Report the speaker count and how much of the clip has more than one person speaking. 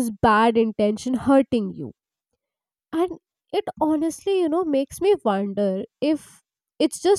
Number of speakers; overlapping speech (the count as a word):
one, no overlap